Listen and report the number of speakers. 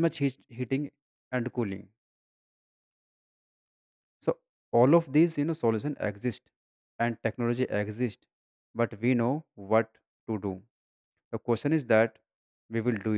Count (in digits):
1